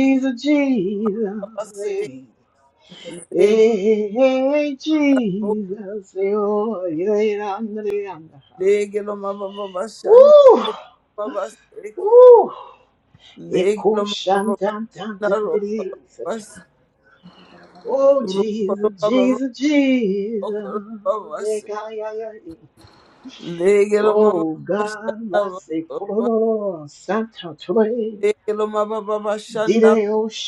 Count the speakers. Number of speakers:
2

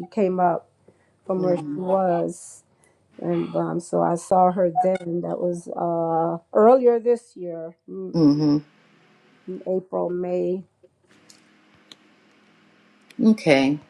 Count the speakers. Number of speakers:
2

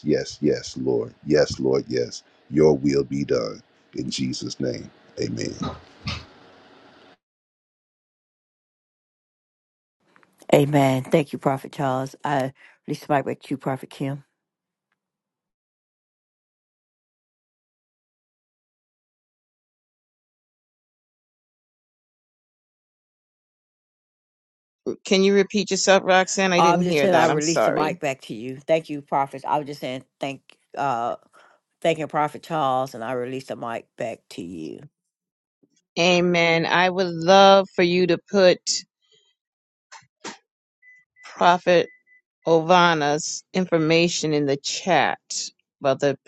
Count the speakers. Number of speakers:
3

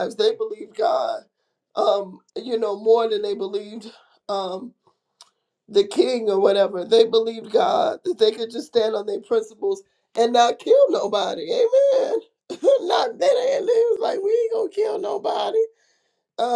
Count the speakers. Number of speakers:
1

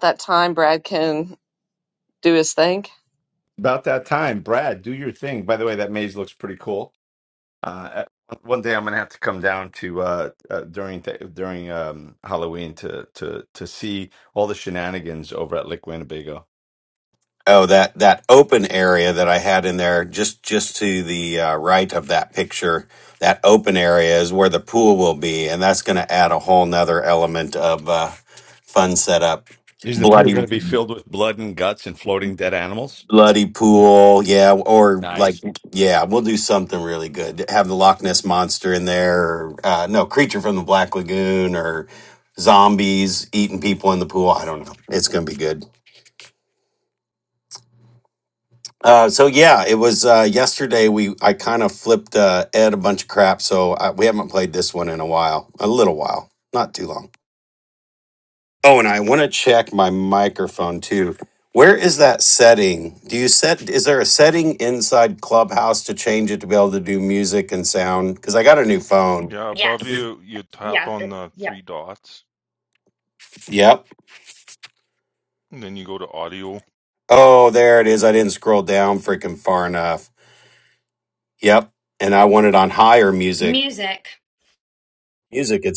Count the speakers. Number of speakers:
5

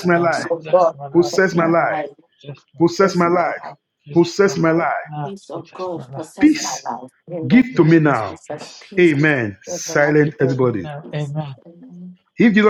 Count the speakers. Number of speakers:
3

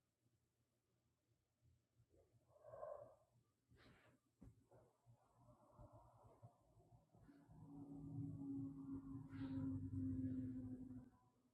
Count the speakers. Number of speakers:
0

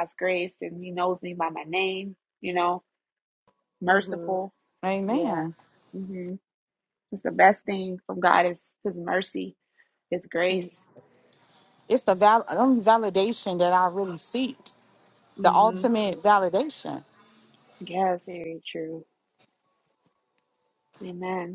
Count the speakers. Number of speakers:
3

